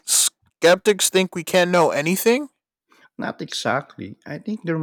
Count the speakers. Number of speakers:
two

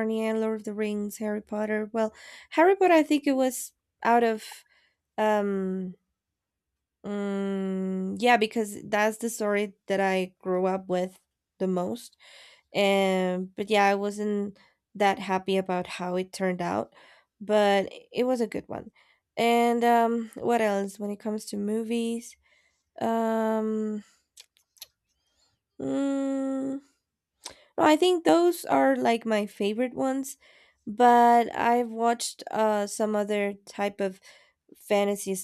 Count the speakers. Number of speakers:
one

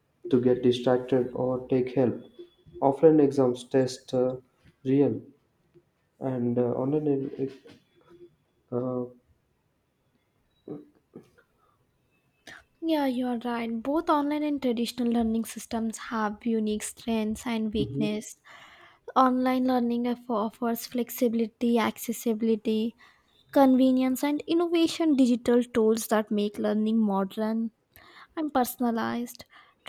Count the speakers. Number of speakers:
two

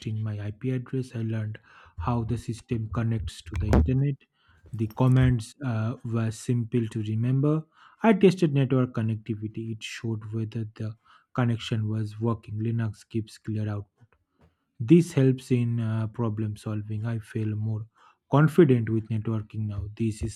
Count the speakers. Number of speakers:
one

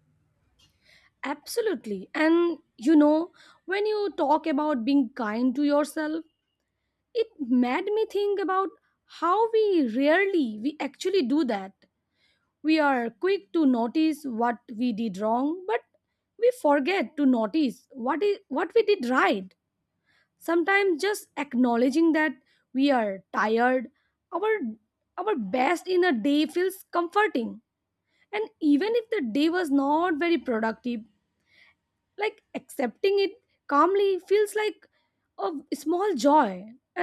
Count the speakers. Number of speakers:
one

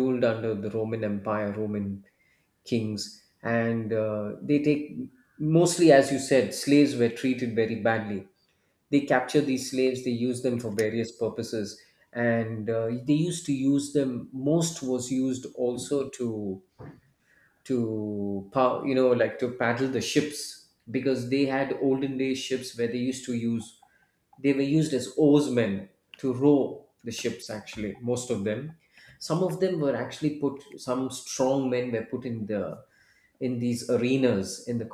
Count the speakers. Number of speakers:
one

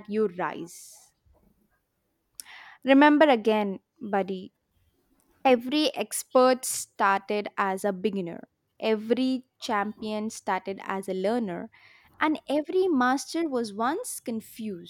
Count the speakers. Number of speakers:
one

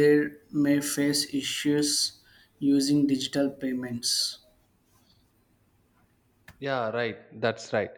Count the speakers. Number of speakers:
two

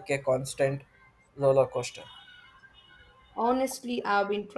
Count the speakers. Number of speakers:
two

